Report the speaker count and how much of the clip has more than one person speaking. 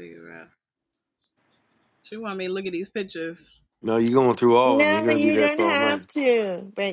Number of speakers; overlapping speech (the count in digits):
3, about 19%